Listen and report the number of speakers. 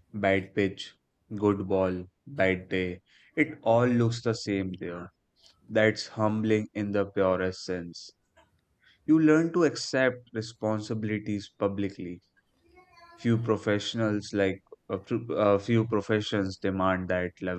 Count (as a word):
one